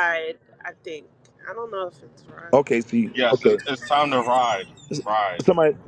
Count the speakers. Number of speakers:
three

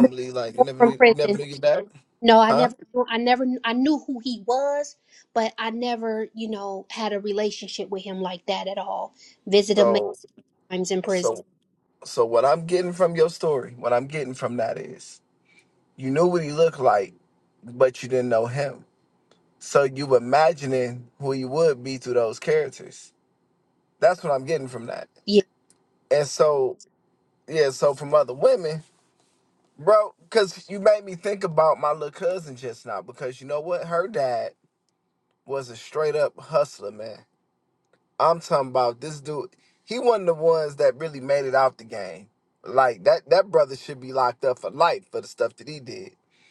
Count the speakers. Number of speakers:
two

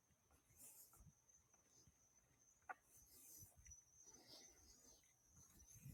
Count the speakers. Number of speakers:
zero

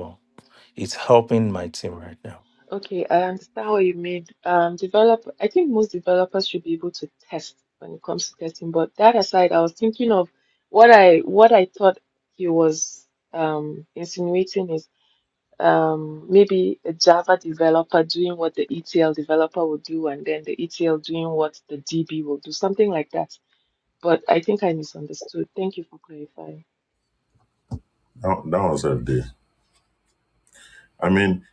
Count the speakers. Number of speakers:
three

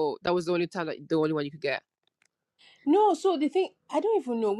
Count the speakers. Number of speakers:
two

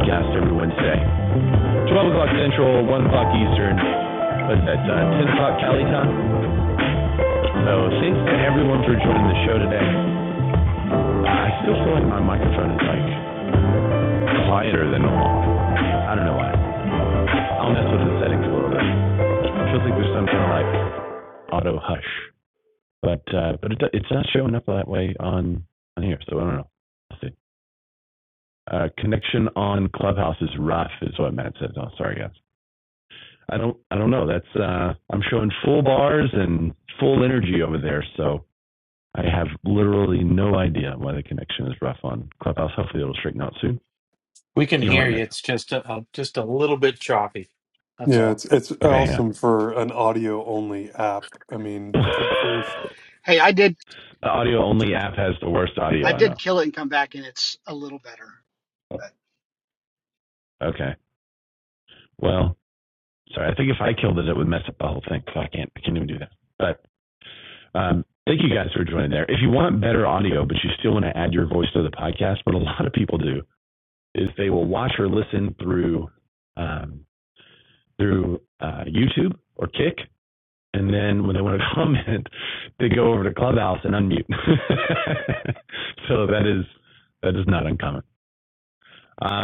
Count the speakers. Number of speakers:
four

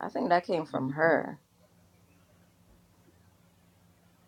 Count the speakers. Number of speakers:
one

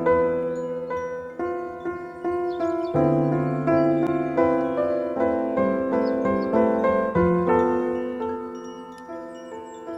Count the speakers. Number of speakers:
zero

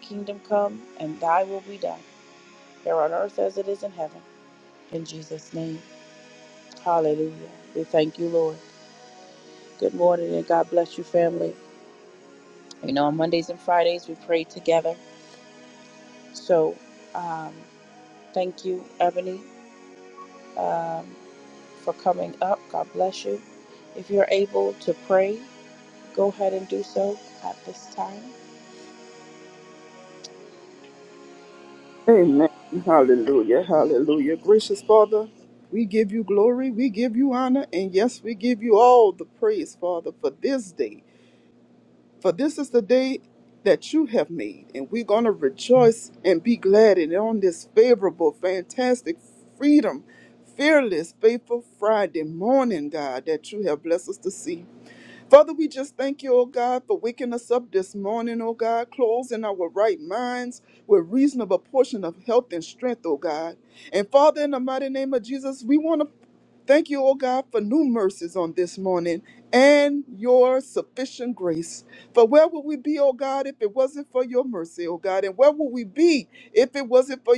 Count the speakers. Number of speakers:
two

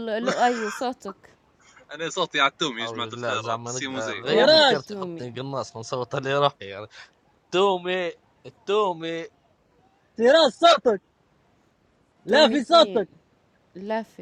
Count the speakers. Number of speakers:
four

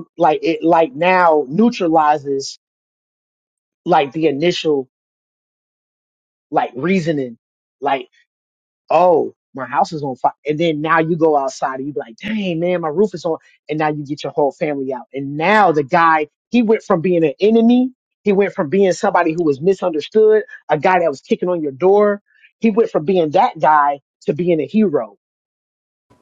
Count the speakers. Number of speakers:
one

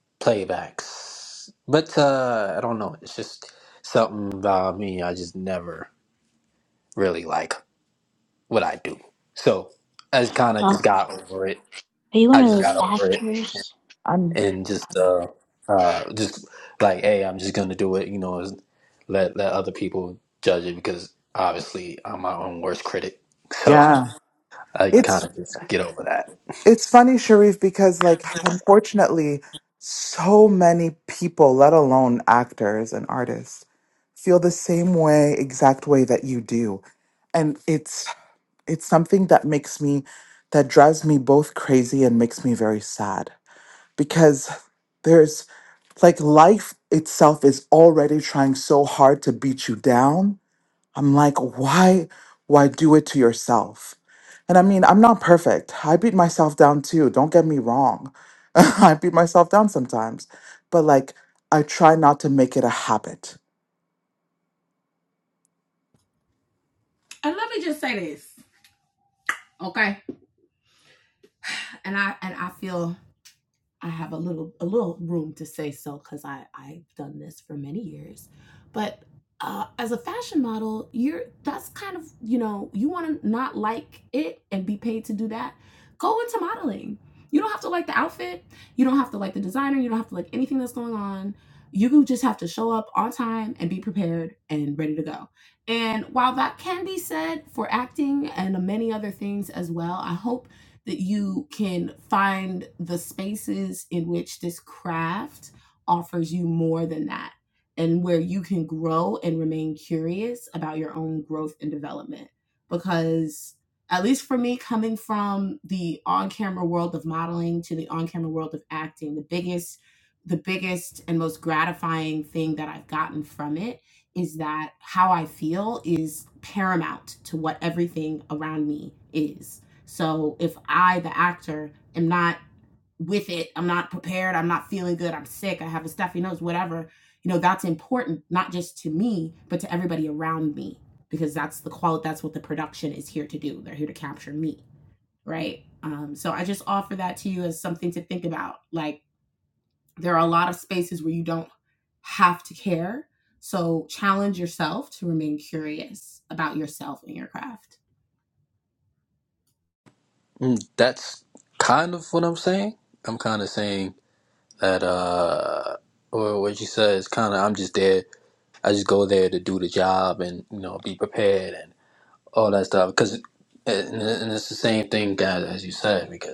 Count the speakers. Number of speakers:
four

